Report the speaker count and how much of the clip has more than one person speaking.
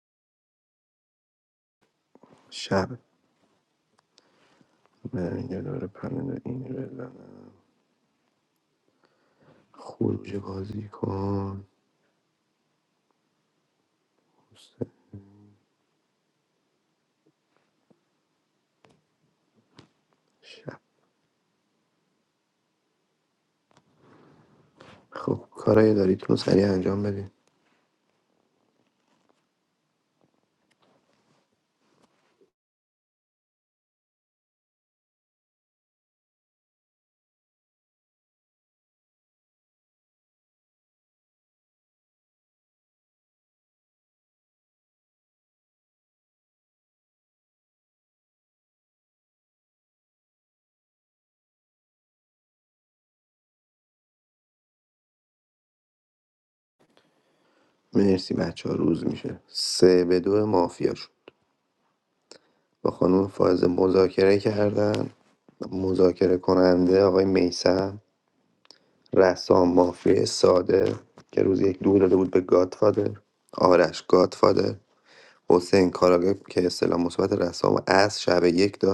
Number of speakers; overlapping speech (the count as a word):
one, no overlap